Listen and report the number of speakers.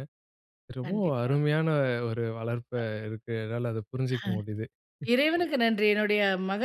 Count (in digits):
2